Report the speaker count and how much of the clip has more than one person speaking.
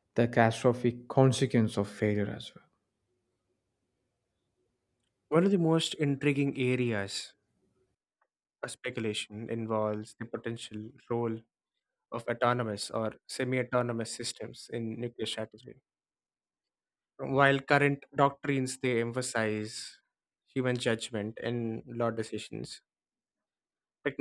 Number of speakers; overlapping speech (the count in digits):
2, no overlap